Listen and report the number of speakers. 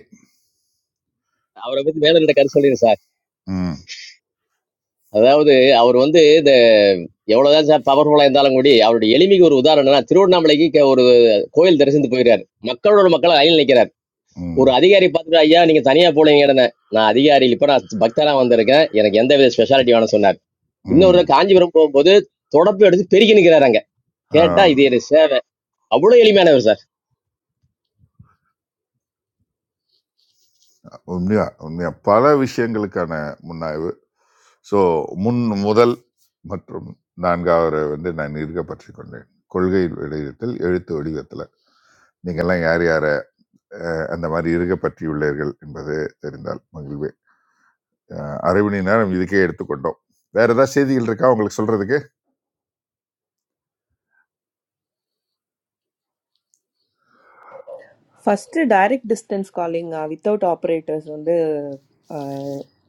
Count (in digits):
3